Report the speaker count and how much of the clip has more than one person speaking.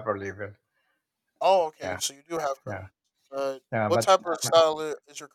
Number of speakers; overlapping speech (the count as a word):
two, about 12%